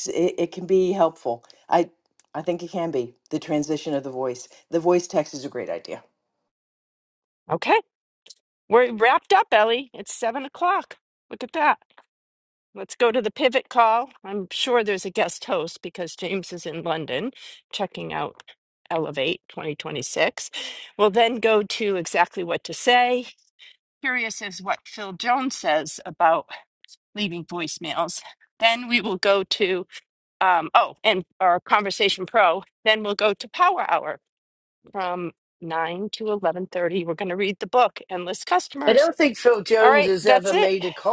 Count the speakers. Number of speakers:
3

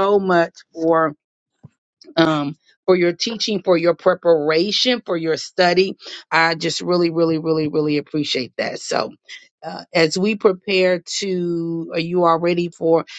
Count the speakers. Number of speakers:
1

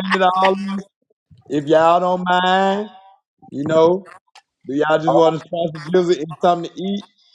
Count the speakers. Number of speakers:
1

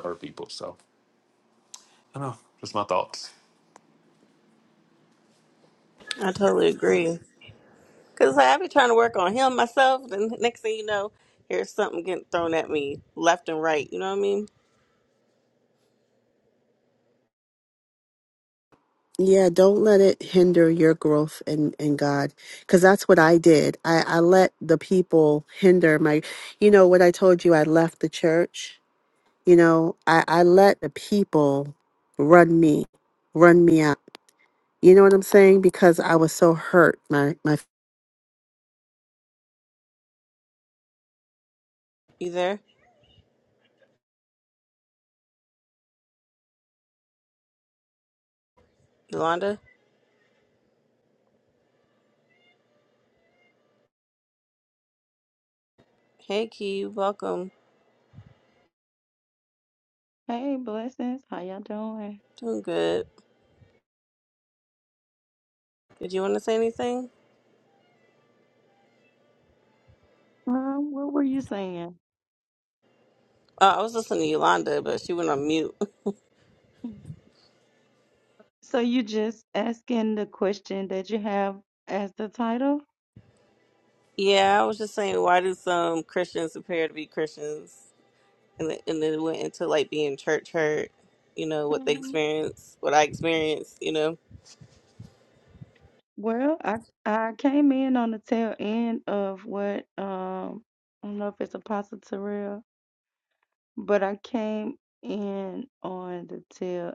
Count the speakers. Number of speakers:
4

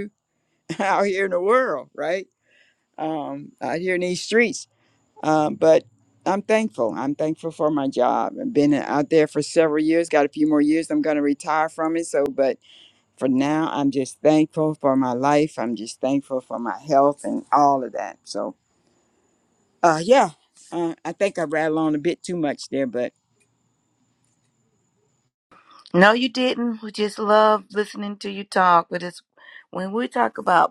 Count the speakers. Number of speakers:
2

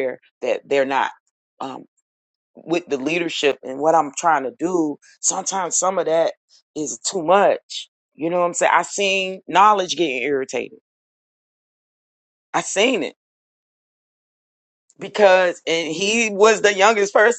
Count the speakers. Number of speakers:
1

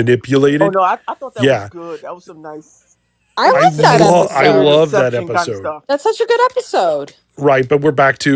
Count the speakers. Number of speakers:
3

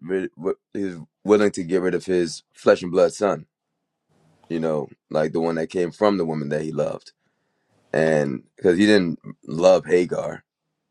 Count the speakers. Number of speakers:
1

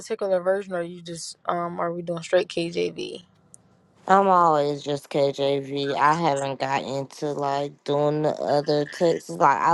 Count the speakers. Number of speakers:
2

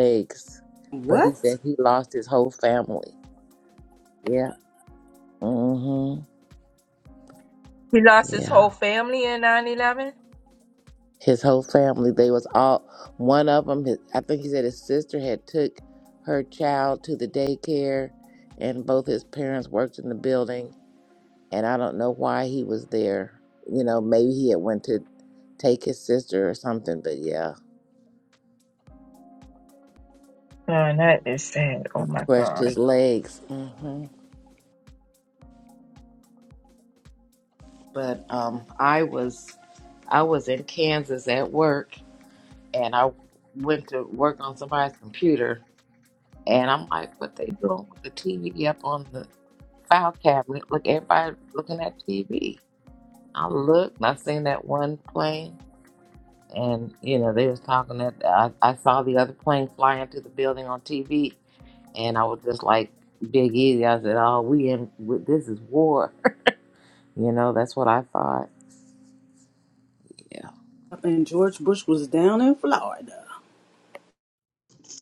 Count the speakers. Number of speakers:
3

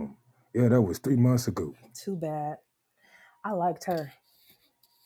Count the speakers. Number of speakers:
2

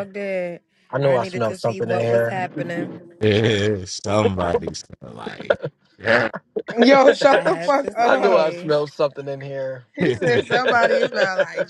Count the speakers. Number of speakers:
4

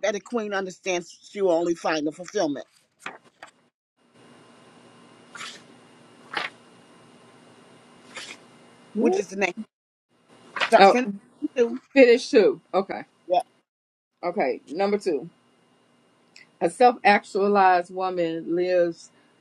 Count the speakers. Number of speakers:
2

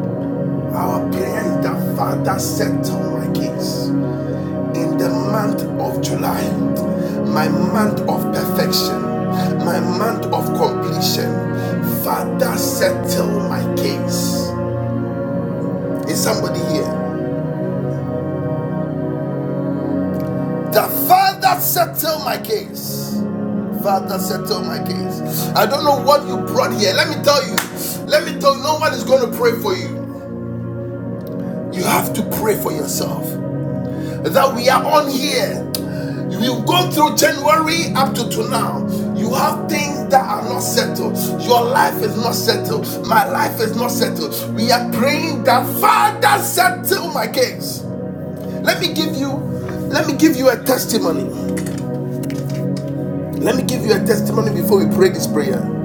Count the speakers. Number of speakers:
1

